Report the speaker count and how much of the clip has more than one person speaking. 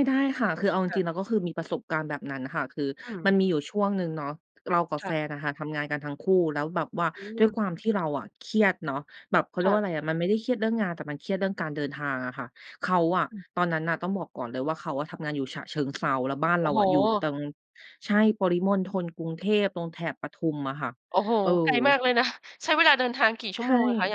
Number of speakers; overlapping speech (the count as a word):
two, about 7%